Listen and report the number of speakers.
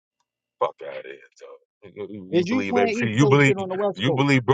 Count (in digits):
2